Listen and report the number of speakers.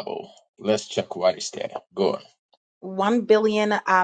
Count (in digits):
2